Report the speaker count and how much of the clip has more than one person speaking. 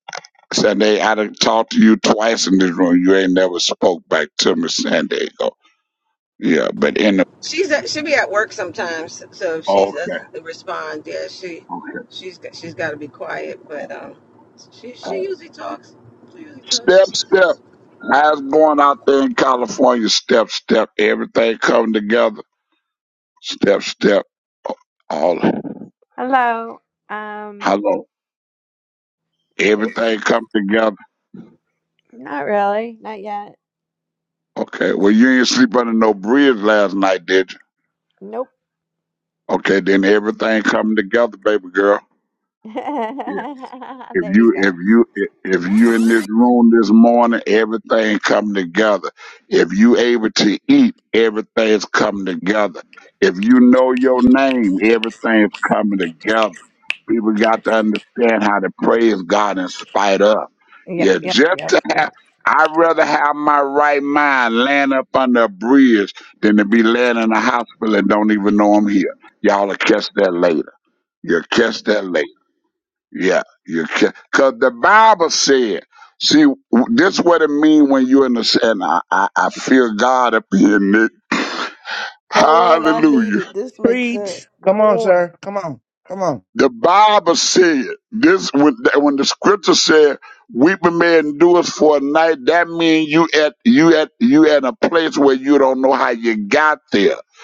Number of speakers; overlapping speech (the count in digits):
5, about 6%